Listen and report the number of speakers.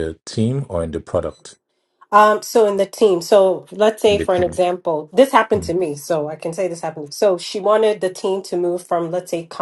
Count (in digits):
2